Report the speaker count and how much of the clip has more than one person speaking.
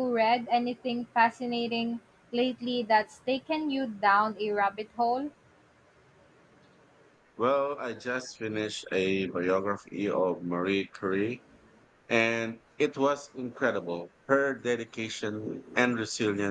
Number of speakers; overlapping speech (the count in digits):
2, no overlap